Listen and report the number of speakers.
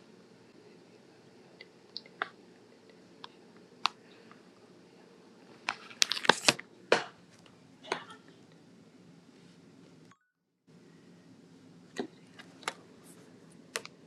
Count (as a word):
zero